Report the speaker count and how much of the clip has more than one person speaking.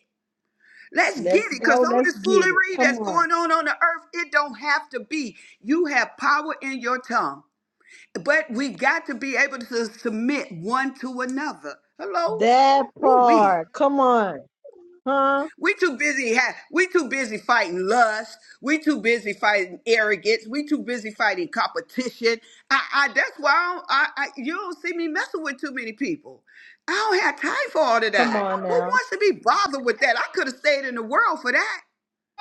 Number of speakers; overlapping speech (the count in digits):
2, about 11%